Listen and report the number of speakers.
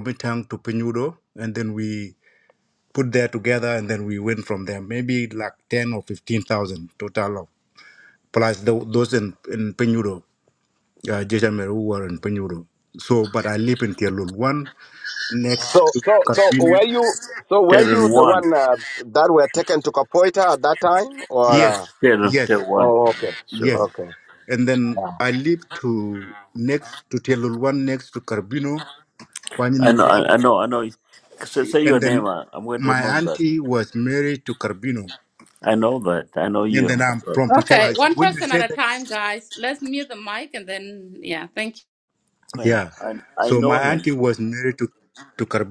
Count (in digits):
4